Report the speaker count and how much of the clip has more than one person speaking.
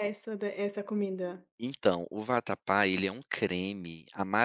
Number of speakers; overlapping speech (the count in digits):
2, no overlap